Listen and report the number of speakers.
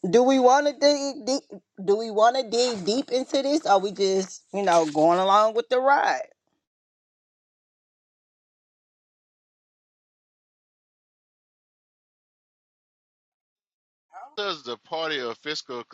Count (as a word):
two